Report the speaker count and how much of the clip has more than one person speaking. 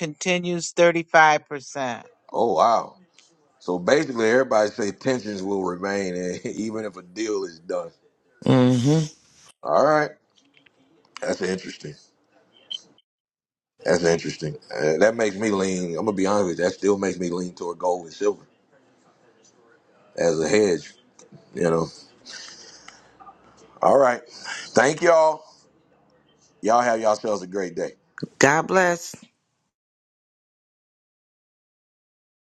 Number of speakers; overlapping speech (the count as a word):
three, no overlap